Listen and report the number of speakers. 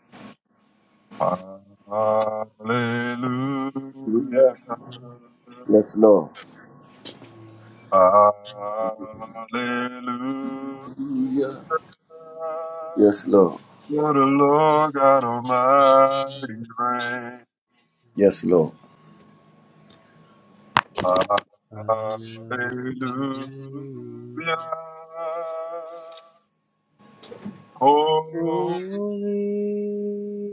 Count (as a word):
three